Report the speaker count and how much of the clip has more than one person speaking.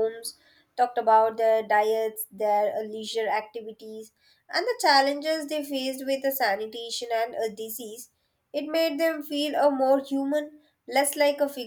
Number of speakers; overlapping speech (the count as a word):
one, no overlap